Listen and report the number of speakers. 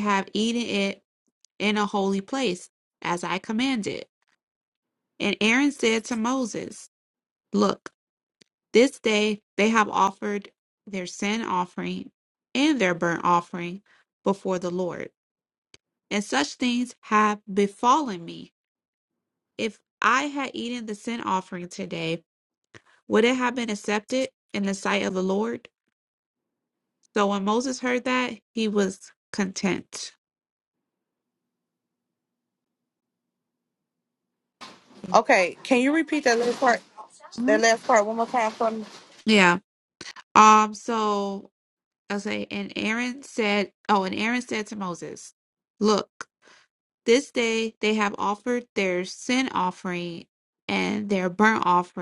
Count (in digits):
2